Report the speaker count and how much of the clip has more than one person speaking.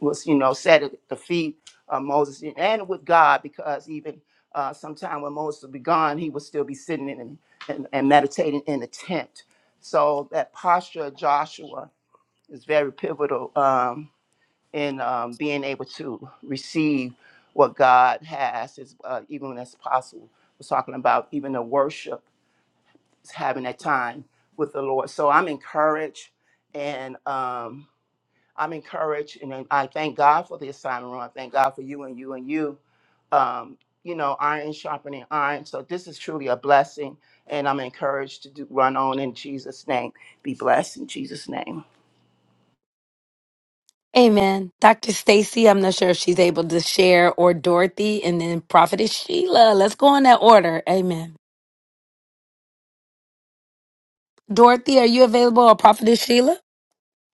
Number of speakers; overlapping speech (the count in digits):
2, no overlap